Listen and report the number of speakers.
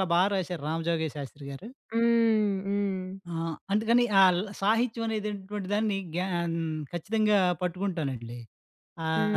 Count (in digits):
2